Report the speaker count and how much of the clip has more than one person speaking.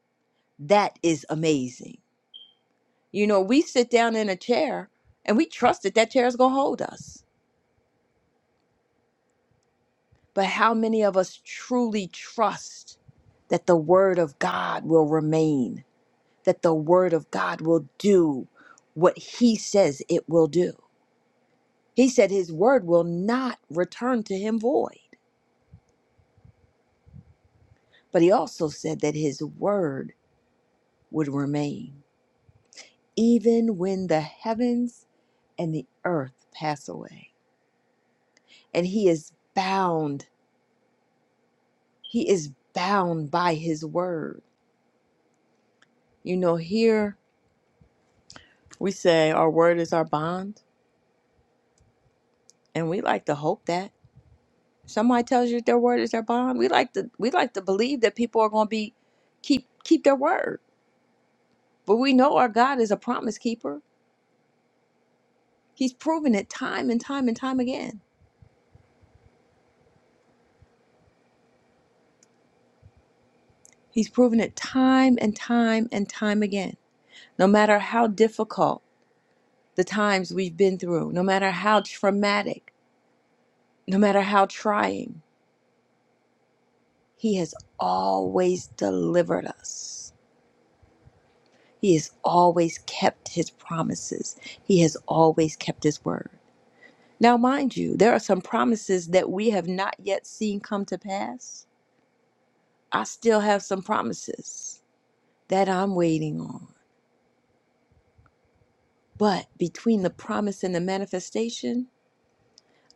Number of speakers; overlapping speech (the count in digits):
1, no overlap